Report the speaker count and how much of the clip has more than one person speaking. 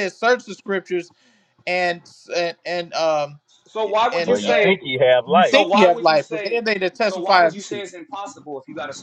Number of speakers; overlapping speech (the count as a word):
three, about 29%